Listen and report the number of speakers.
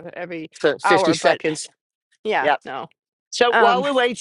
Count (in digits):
2